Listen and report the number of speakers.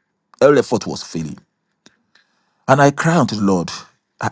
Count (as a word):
one